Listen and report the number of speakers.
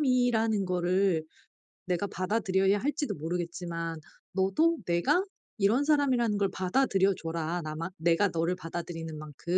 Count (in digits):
1